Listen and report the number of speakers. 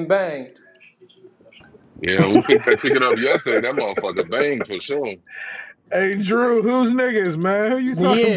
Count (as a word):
three